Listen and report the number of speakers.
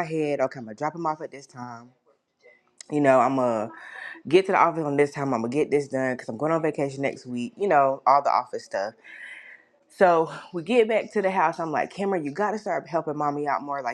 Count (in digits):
1